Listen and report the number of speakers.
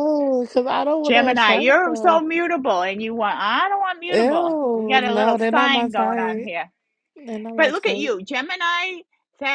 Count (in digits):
2